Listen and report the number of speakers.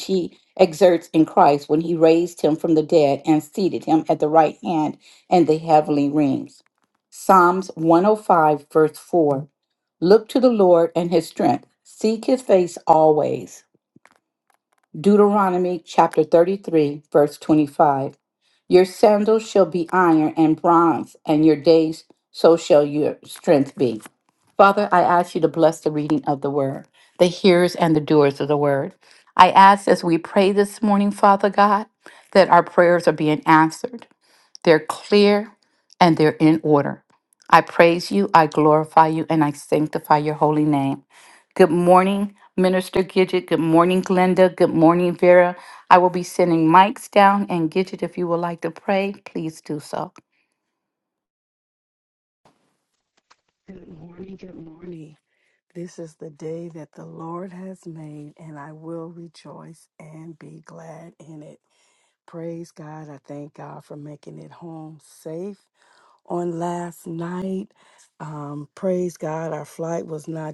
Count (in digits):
2